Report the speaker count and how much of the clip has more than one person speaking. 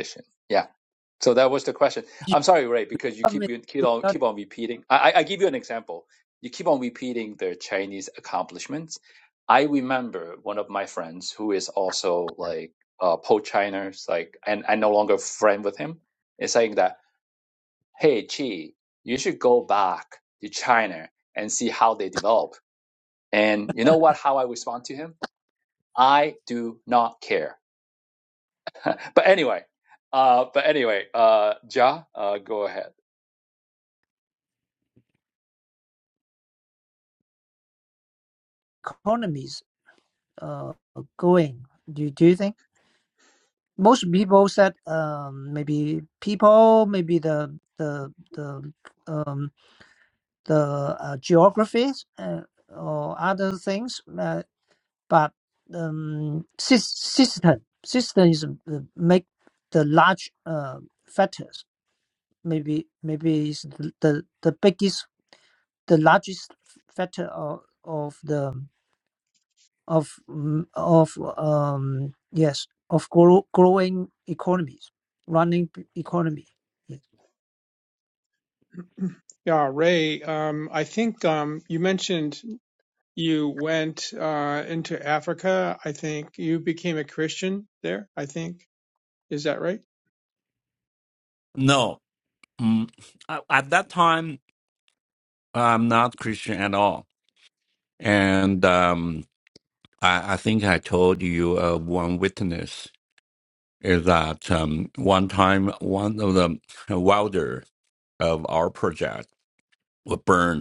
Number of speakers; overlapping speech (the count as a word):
four, under 1%